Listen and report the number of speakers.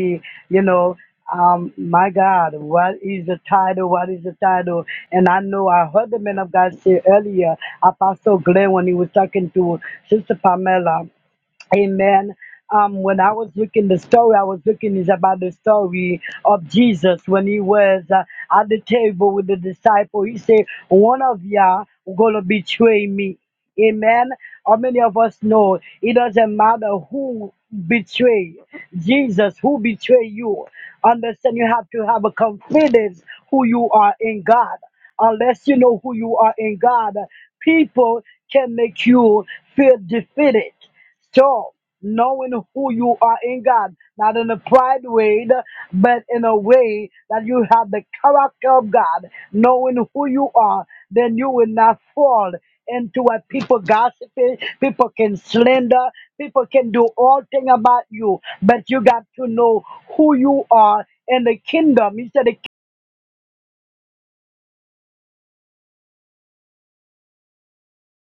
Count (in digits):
1